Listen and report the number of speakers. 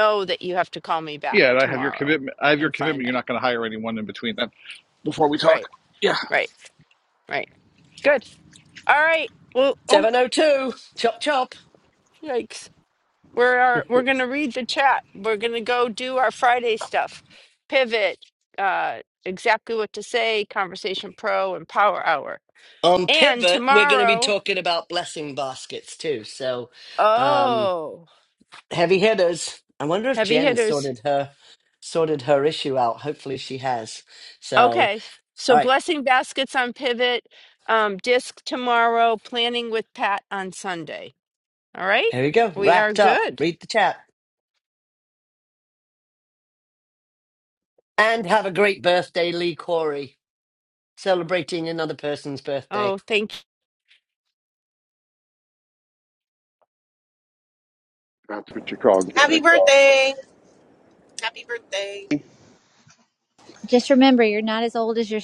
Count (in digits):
6